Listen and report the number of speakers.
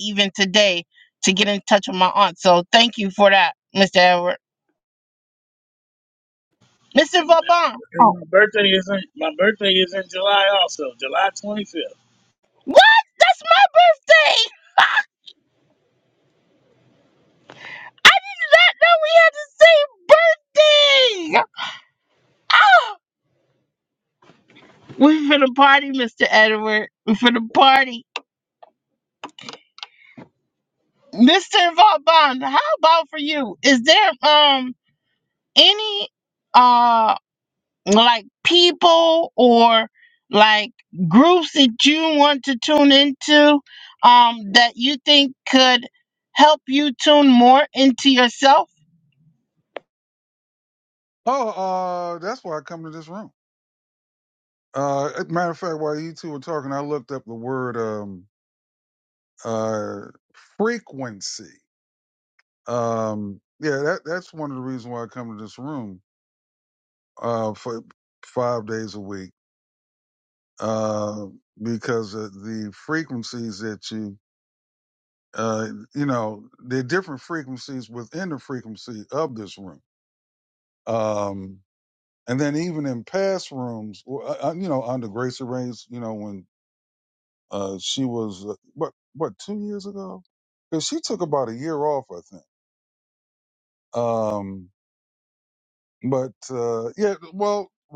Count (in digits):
3